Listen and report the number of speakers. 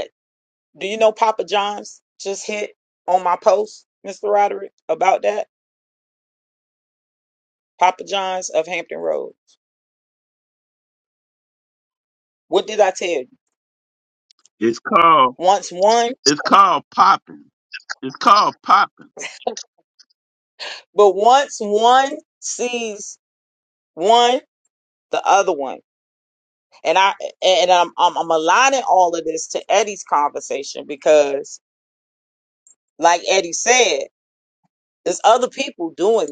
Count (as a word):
two